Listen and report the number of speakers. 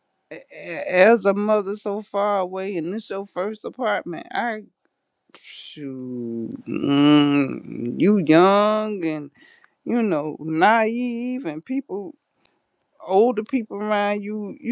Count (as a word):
one